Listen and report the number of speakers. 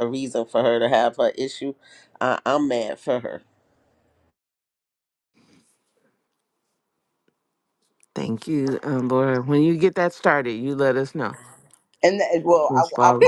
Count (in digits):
3